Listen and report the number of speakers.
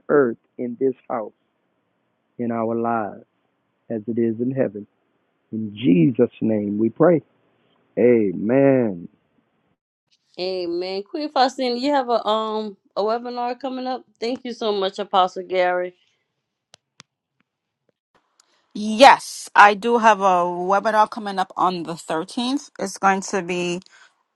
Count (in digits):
3